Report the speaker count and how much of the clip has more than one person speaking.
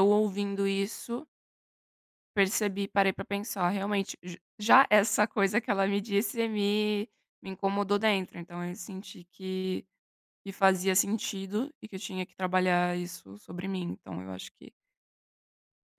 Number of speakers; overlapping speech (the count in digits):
1, no overlap